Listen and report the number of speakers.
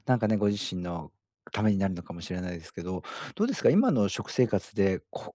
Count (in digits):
1